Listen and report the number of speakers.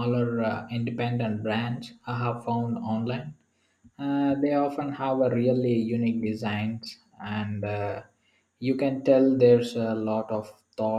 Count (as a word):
one